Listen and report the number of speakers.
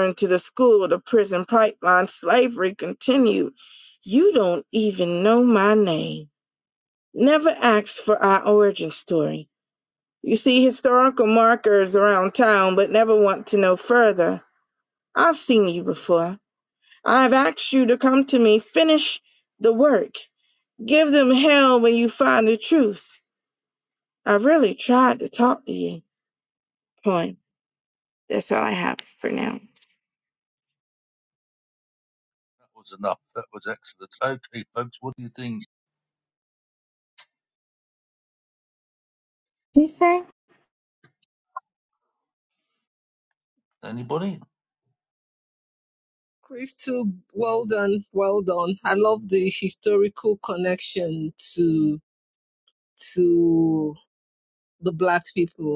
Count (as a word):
three